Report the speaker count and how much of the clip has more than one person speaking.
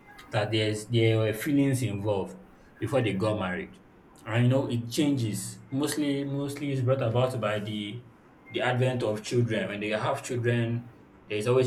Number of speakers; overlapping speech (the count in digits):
1, no overlap